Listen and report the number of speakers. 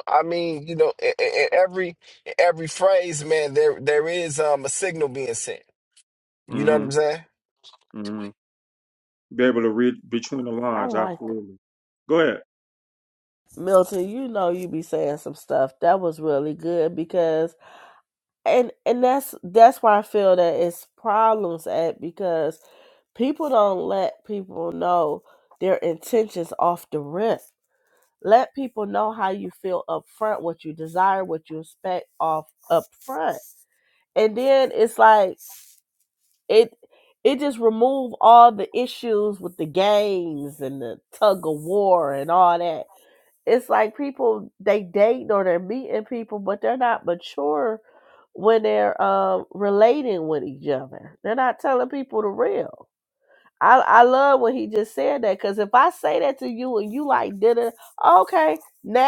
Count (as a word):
three